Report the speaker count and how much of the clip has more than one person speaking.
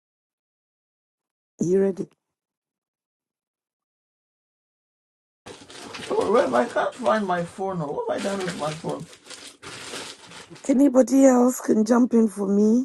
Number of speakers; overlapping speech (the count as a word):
two, no overlap